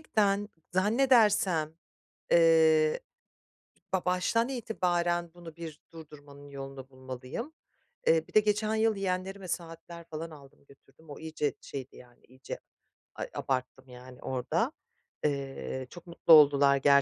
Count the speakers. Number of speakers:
one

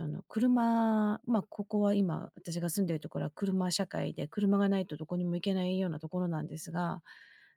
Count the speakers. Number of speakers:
one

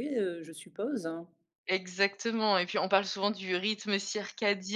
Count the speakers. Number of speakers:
two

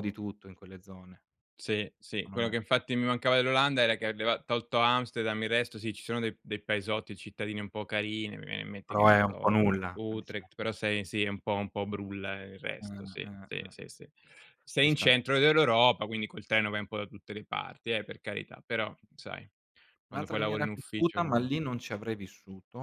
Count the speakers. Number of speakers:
two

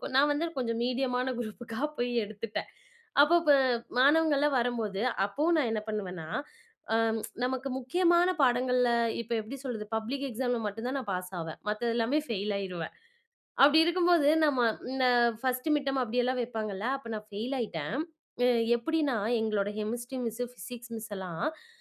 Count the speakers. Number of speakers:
one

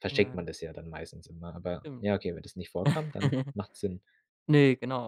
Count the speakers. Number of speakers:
two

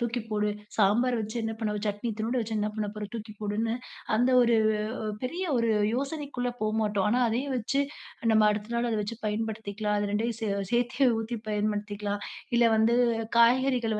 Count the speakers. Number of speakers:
one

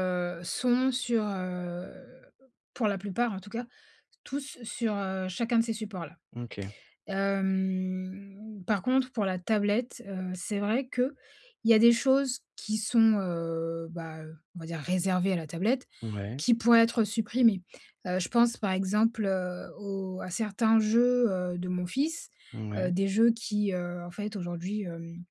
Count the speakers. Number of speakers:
two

